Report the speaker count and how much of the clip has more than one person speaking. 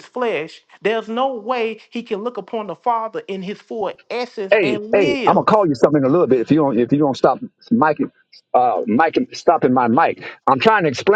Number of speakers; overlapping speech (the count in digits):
2, about 9%